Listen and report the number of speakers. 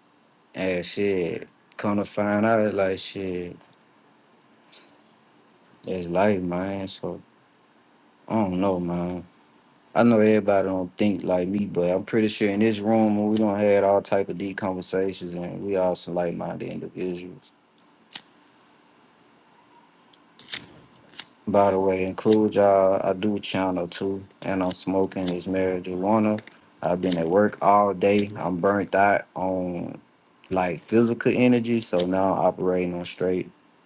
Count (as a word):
one